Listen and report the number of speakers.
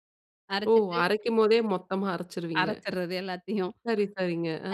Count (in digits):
2